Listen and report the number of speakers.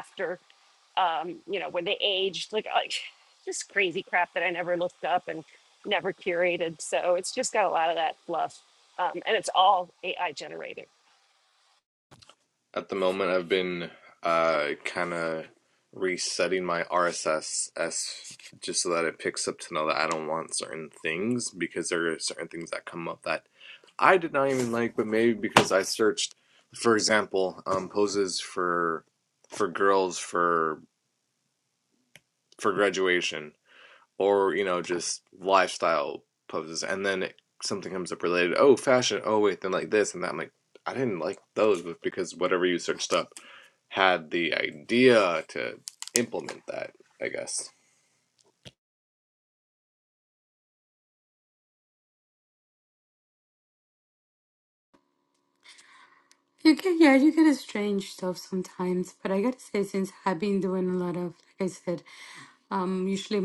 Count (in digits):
3